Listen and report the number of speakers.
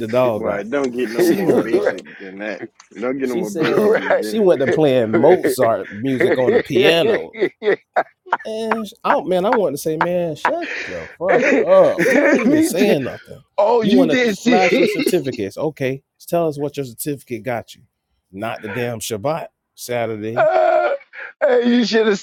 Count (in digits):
3